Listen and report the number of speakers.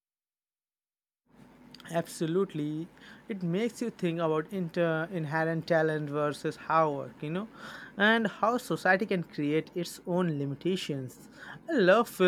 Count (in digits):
1